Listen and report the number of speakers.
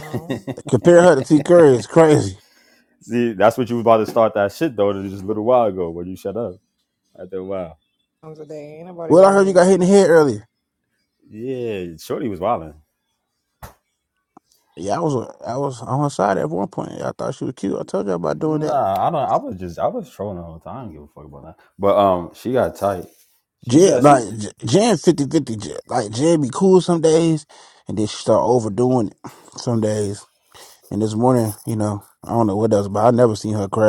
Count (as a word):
three